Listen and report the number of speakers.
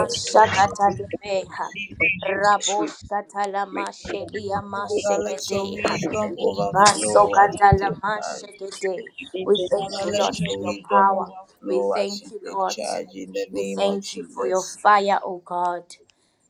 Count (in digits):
3